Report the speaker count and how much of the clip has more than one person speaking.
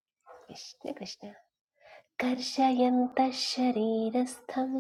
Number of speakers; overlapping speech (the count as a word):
one, no overlap